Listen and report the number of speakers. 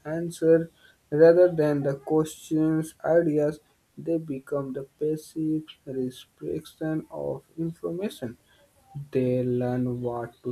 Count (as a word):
one